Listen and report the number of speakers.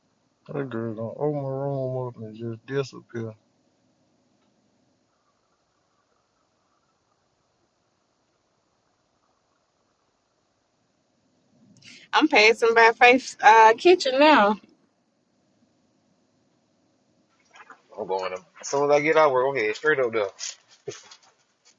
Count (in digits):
3